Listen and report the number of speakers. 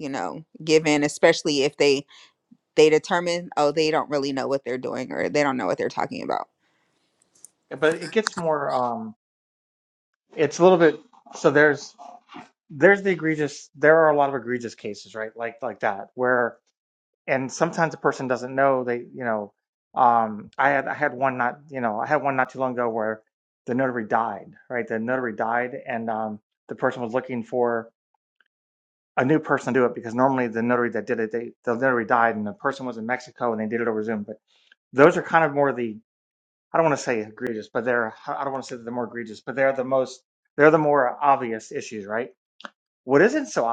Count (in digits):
2